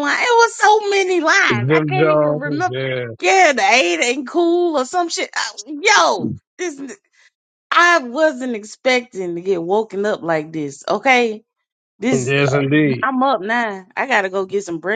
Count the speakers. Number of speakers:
two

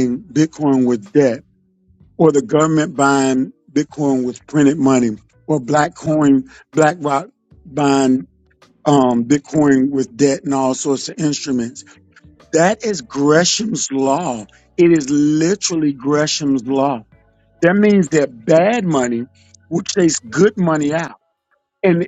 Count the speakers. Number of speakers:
one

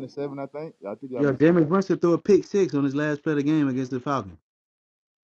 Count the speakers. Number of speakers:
two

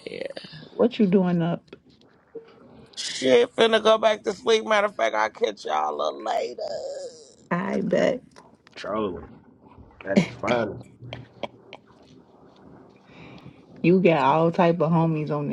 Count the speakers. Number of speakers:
three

